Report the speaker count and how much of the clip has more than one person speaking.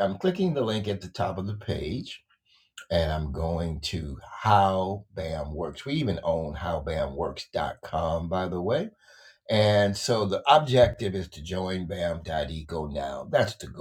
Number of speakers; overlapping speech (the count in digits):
1, no overlap